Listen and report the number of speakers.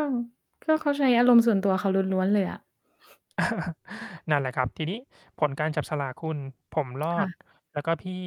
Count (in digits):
2